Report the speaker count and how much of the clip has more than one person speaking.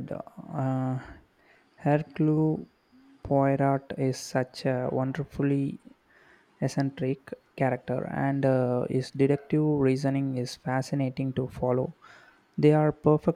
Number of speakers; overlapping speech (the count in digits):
1, no overlap